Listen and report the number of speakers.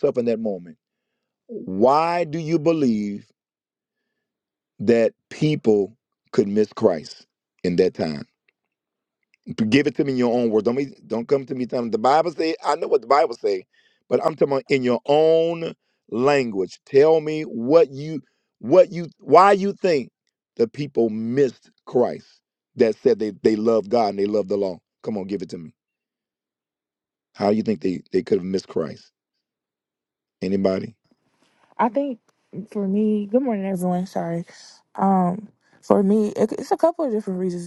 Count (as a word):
two